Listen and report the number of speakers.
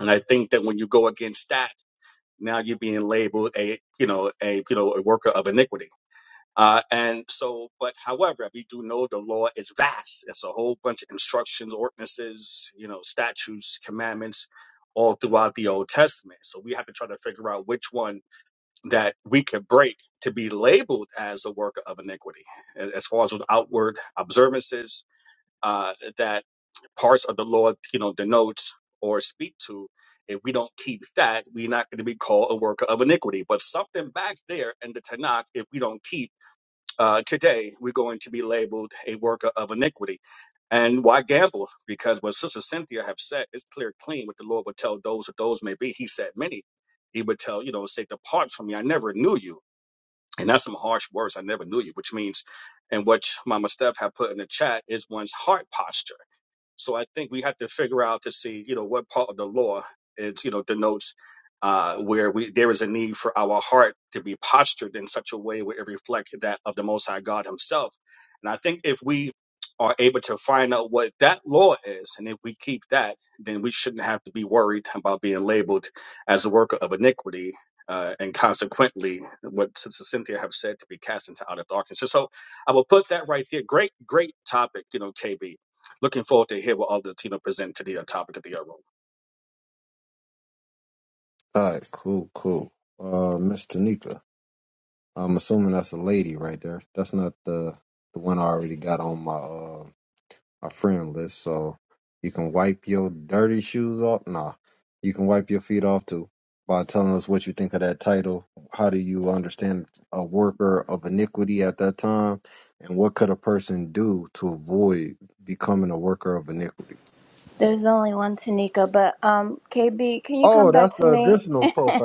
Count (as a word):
three